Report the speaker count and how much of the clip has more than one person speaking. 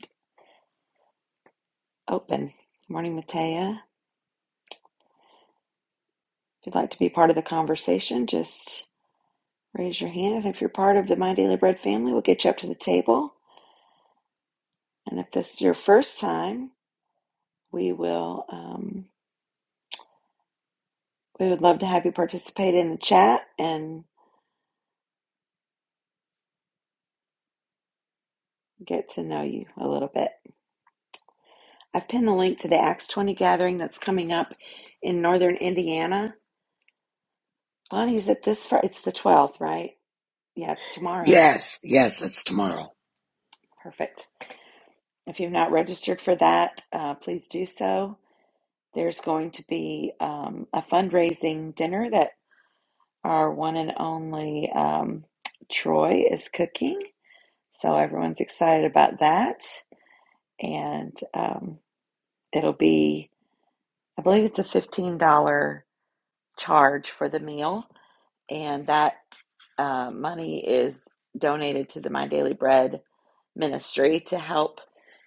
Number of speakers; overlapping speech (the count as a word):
two, under 1%